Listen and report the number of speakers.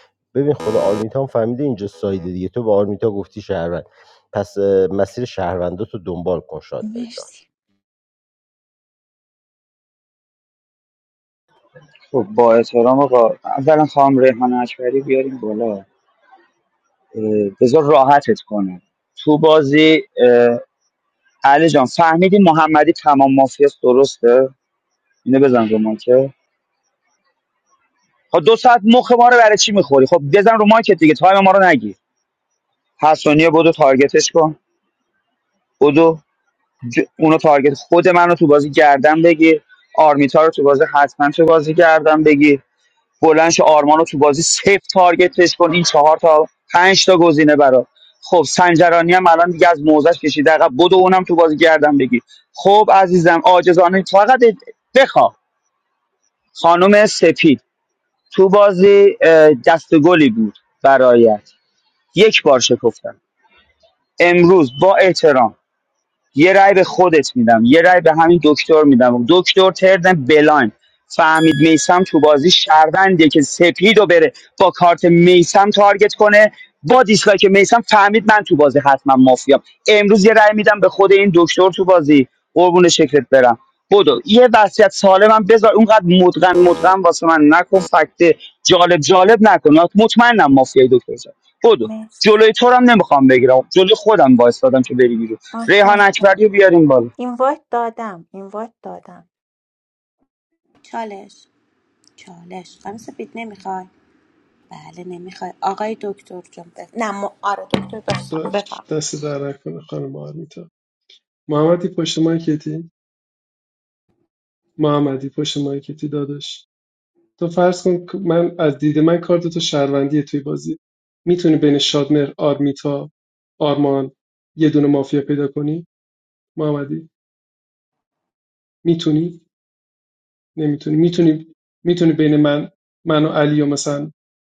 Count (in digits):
5